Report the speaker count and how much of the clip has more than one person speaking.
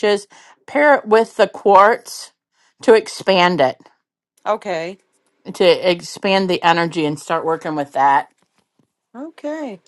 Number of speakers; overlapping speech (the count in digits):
2, no overlap